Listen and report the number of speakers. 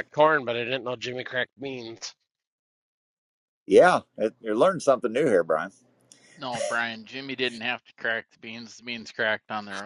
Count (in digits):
3